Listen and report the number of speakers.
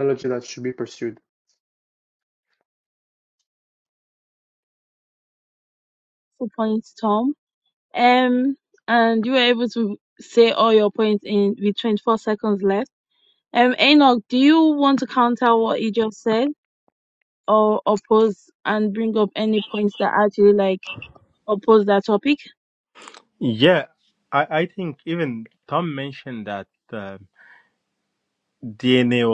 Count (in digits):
3